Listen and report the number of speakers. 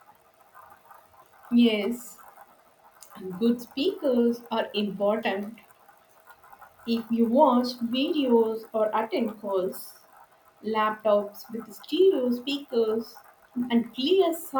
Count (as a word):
one